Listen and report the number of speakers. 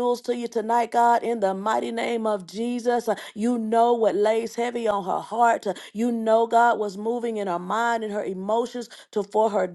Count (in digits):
1